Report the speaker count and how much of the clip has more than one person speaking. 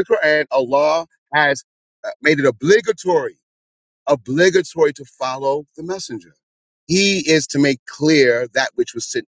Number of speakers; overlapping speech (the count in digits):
1, no overlap